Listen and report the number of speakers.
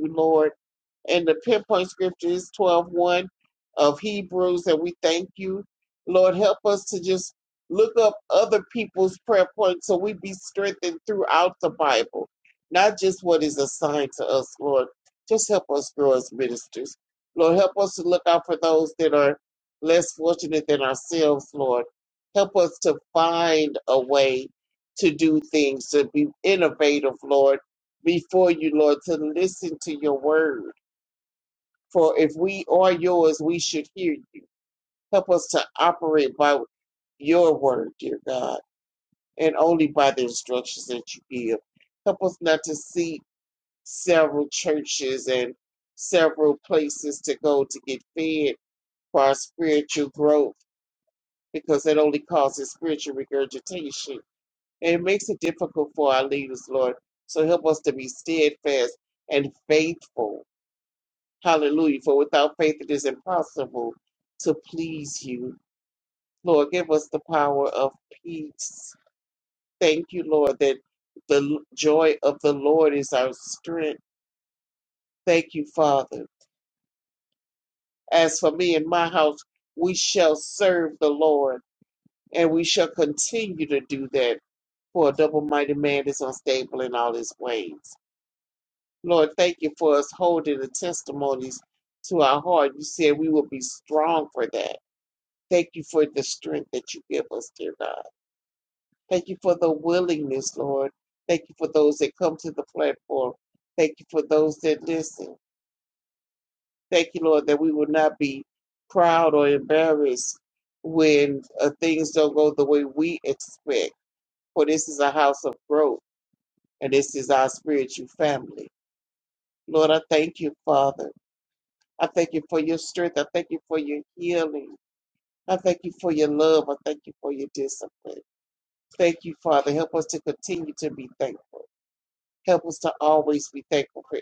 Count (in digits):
1